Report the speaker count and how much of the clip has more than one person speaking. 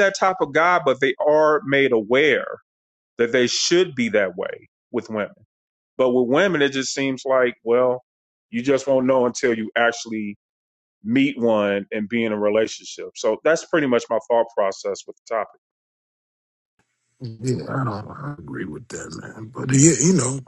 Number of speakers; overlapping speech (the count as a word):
two, no overlap